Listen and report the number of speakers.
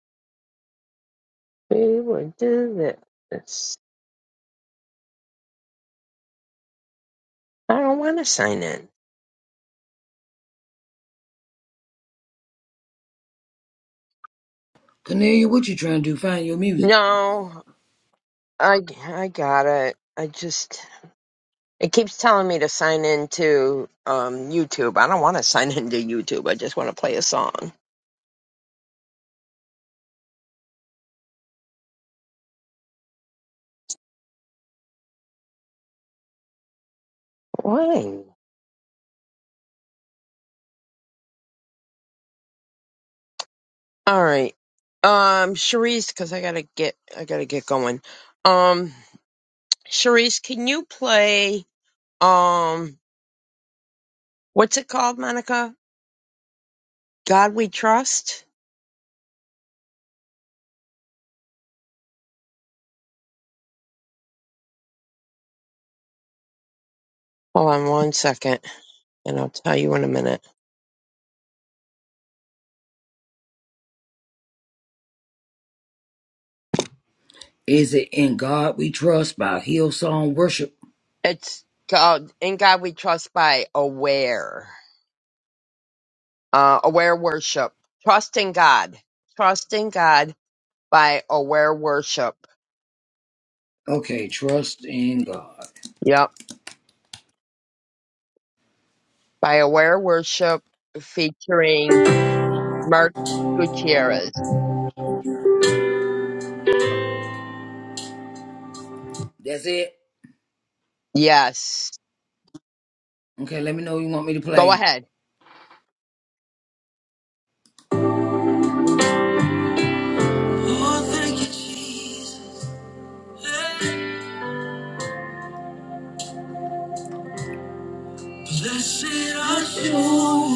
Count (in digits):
2